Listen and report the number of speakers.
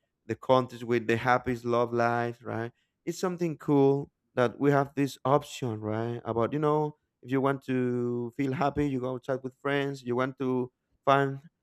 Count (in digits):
1